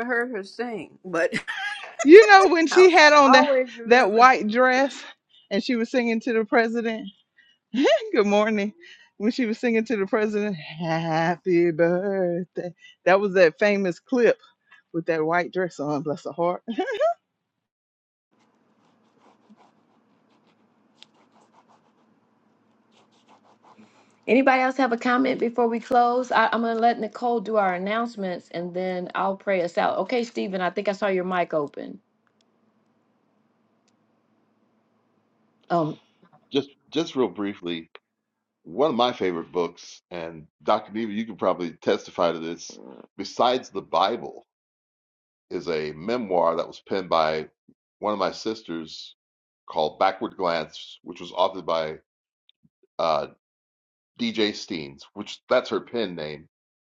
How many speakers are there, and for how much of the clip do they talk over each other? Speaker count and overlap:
four, about 2%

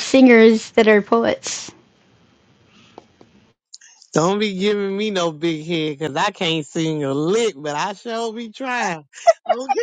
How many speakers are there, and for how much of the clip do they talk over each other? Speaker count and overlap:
two, no overlap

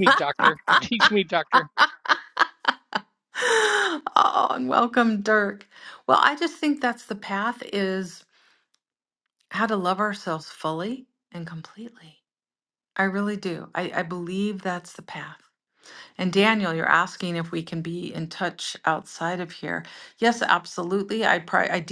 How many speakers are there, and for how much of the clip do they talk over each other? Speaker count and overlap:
two, no overlap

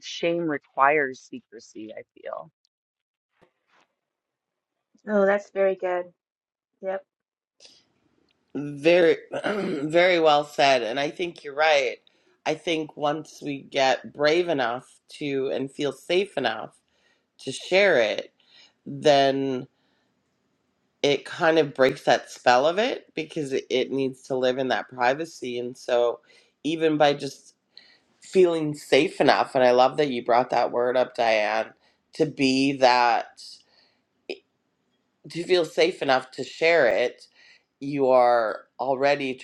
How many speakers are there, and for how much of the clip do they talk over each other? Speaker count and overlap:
three, no overlap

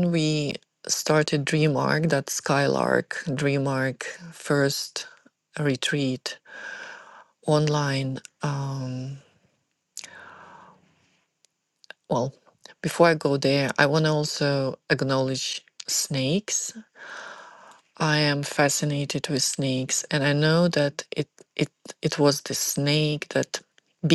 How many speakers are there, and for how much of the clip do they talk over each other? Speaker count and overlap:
one, no overlap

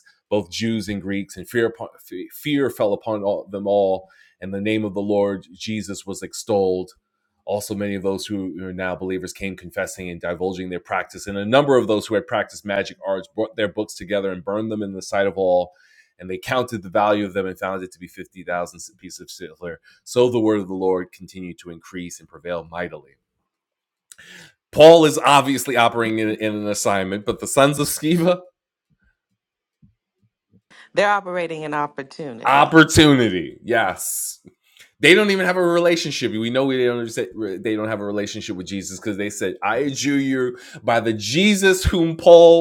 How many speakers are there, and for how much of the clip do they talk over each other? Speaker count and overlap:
two, about 1%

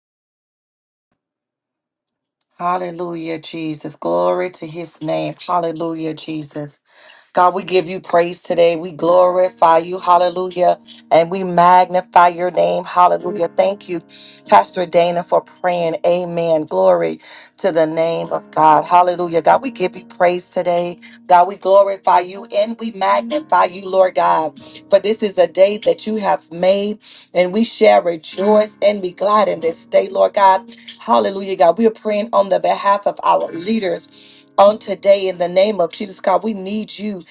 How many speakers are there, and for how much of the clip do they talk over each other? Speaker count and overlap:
one, no overlap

